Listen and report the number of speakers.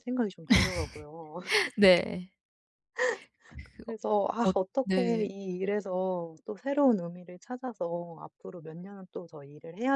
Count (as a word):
two